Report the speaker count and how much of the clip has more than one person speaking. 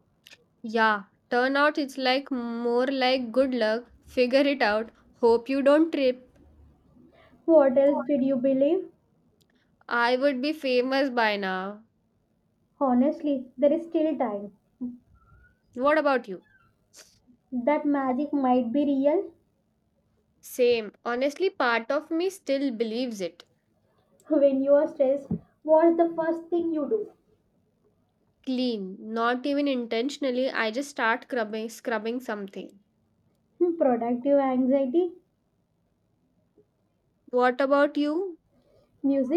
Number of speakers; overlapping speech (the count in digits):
2, no overlap